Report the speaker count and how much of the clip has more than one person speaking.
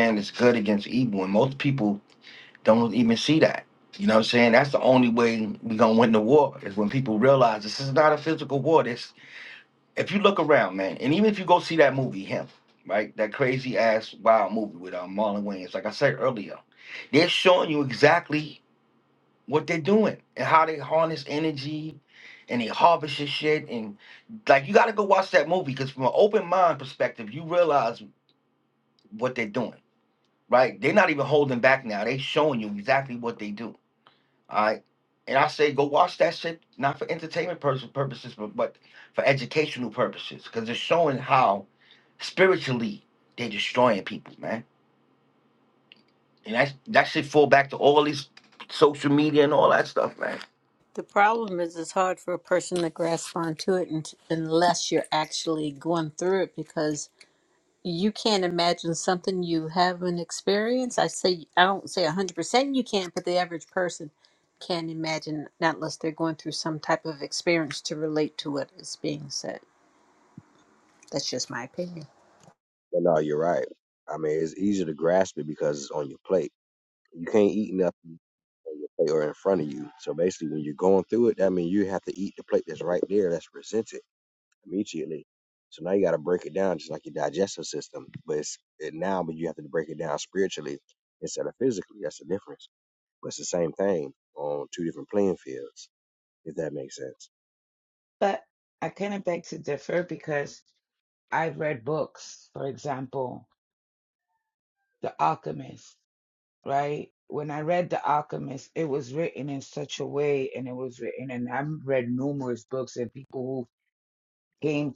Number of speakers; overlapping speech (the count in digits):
4, no overlap